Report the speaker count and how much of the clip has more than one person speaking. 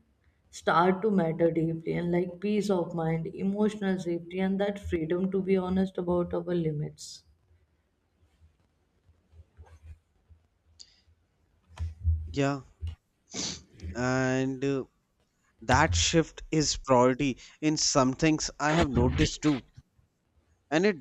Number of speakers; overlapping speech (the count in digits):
2, no overlap